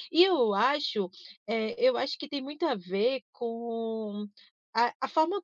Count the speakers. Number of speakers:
1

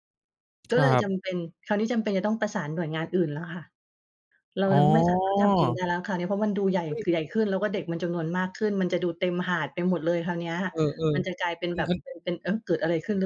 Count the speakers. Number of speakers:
2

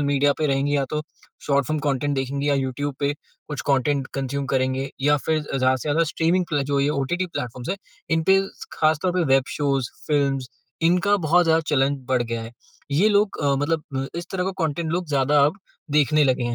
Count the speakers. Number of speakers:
1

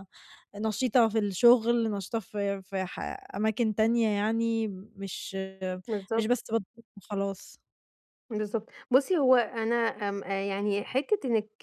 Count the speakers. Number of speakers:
2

